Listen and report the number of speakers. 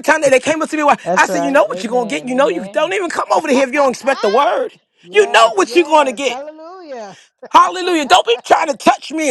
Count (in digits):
2